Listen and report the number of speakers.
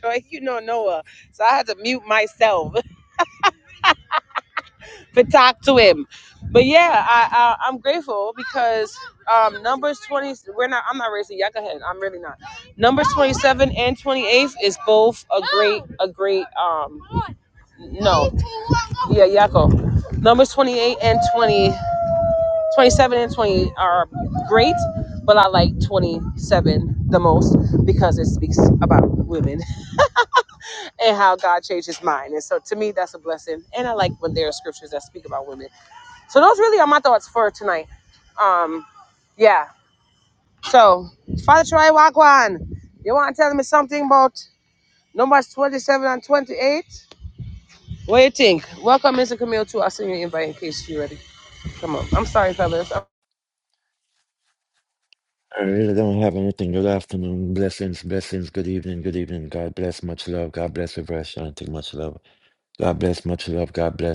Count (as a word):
two